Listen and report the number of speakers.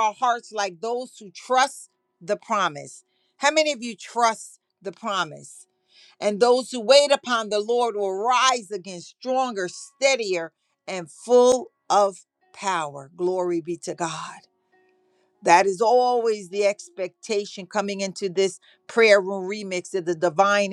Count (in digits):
1